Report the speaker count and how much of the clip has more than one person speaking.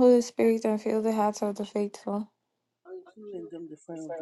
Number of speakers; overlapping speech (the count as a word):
two, no overlap